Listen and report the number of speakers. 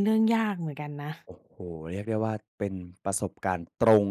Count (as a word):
two